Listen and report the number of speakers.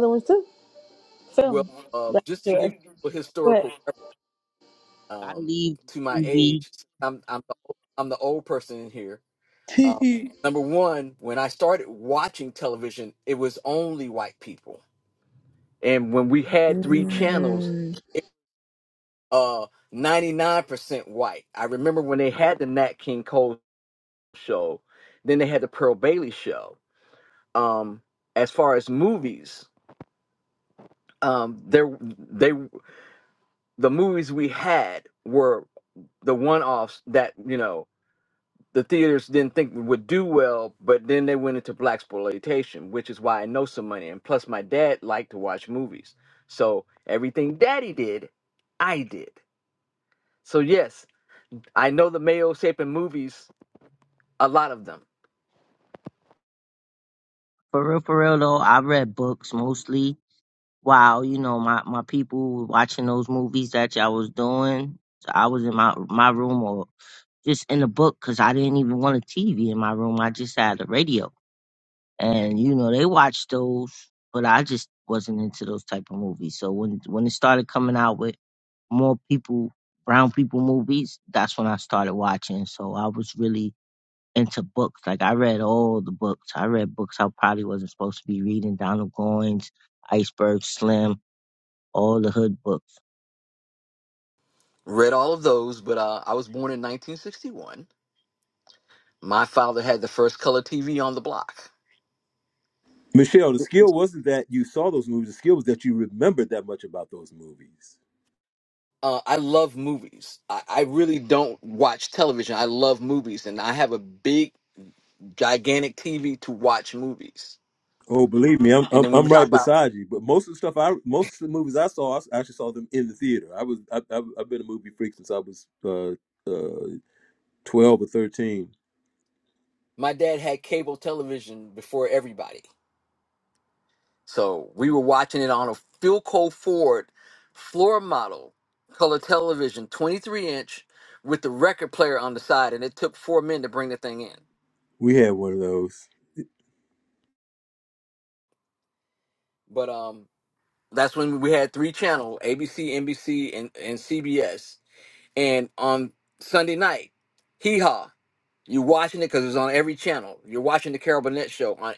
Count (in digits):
4